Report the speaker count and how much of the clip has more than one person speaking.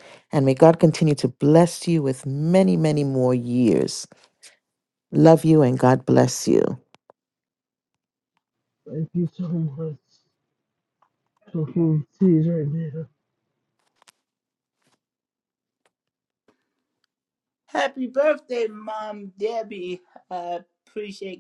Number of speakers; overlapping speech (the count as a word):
three, no overlap